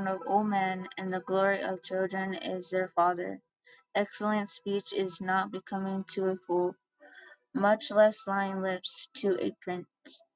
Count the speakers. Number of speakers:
one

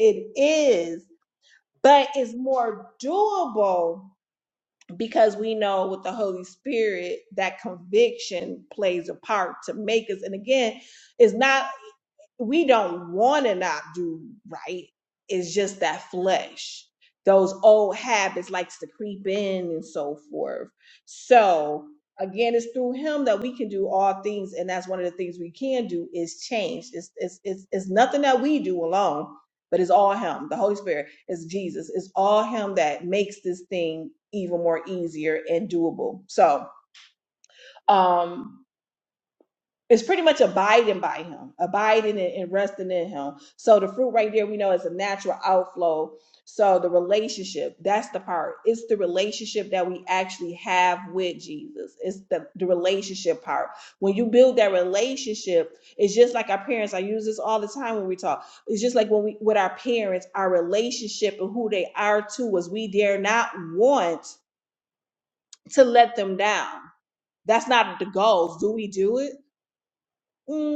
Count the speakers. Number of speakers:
one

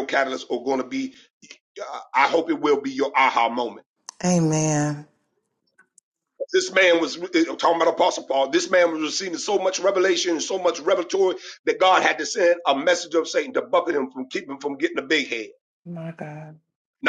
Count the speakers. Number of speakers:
two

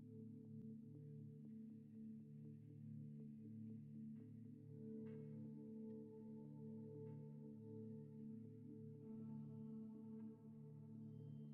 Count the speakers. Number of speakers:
zero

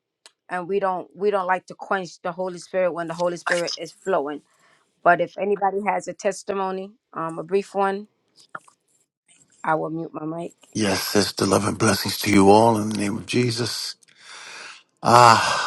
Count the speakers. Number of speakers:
two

